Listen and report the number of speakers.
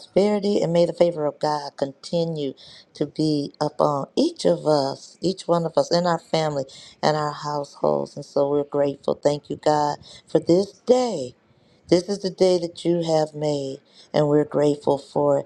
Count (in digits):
1